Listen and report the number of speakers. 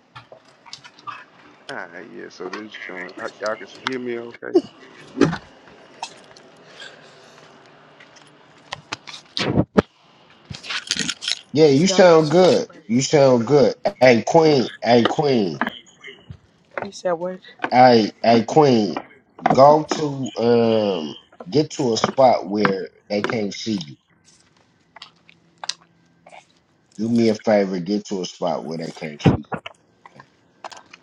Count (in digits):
3